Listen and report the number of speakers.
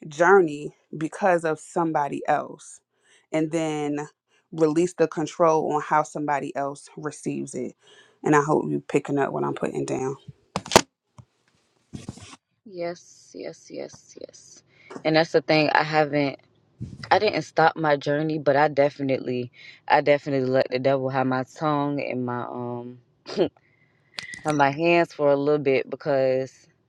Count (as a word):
two